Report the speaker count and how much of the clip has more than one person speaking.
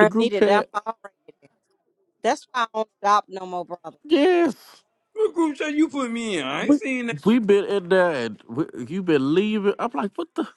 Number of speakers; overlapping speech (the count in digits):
3, about 8%